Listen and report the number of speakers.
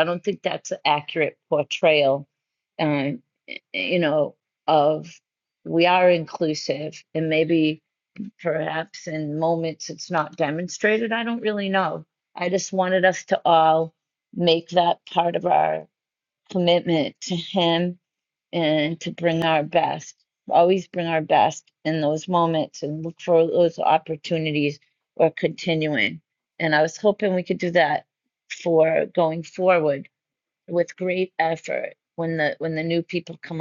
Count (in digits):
1